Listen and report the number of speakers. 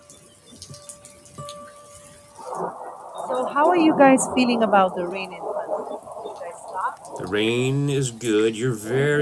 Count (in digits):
2